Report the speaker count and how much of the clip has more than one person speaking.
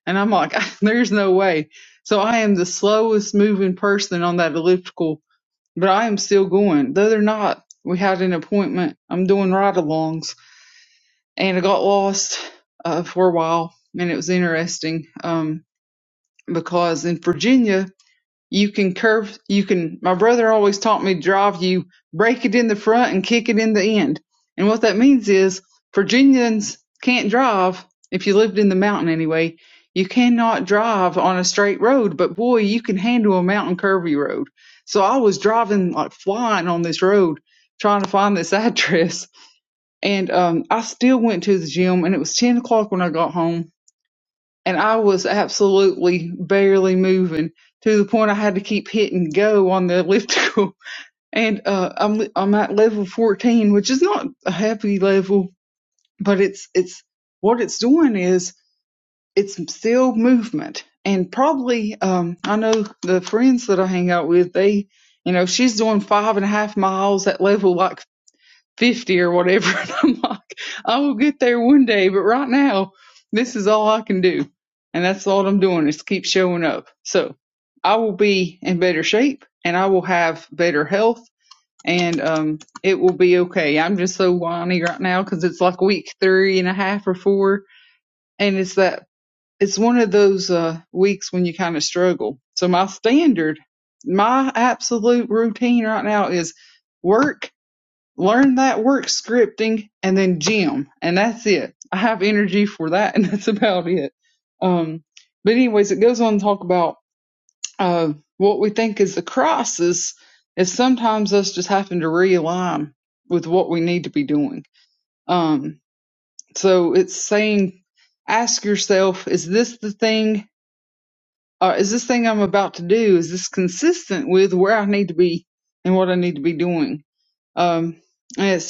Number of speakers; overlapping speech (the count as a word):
one, no overlap